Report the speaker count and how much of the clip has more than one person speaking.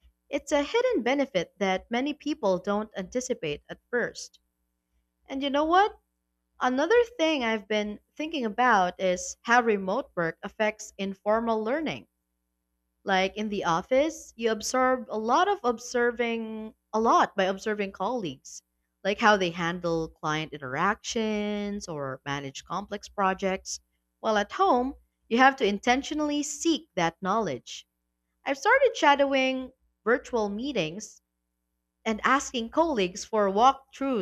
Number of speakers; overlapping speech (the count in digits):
1, no overlap